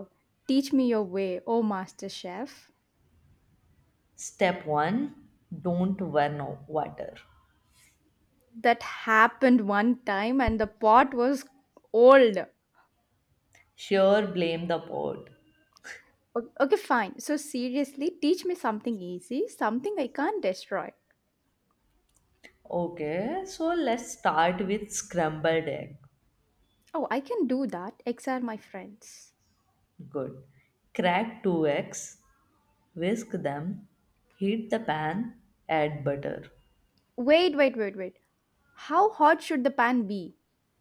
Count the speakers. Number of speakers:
2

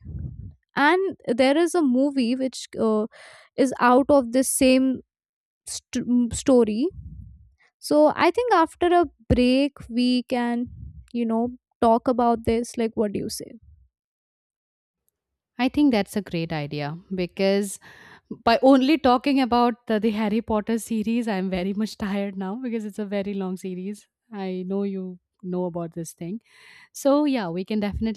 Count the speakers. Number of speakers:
2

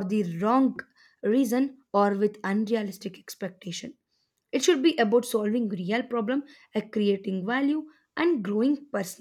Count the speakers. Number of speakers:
1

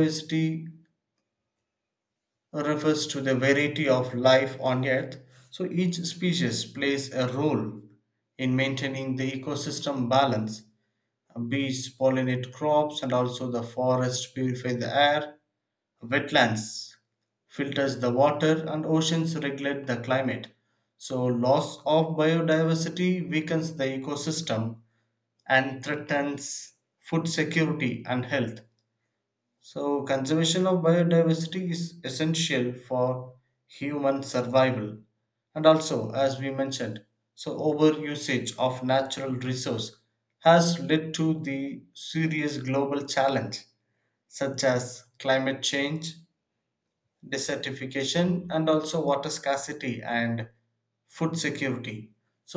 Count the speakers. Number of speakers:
1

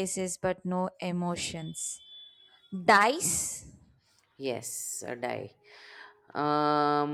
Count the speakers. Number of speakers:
2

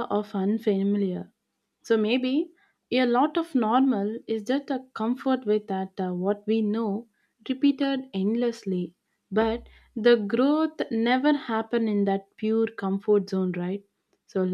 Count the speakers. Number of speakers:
1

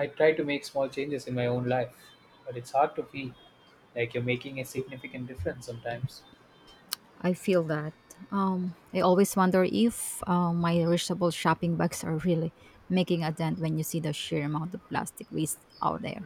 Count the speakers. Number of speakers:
2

